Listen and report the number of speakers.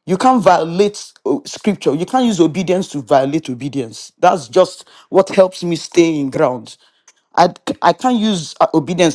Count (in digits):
1